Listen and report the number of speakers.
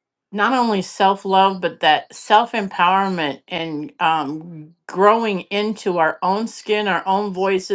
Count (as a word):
one